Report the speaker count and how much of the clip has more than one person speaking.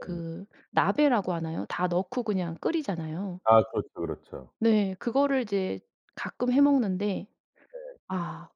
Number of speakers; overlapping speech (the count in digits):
2, about 2%